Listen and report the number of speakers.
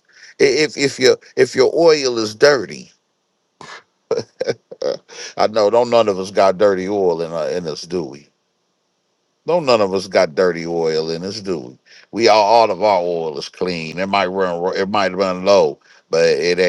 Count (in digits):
1